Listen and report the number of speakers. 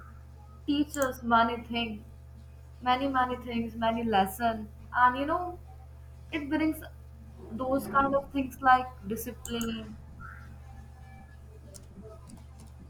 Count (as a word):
one